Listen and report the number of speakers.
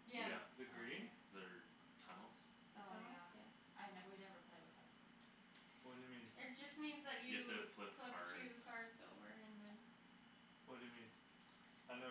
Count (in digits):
4